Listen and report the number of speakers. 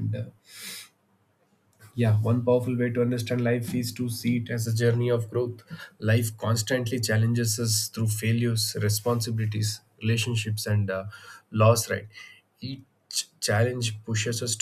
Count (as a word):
one